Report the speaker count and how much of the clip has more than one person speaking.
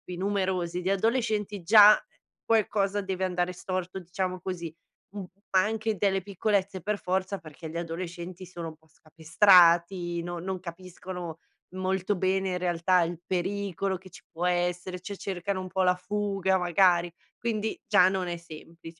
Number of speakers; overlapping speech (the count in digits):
1, no overlap